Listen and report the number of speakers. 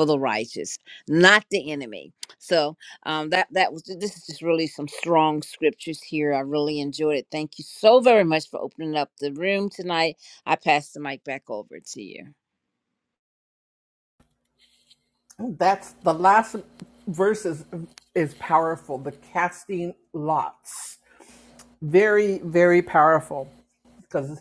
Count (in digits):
2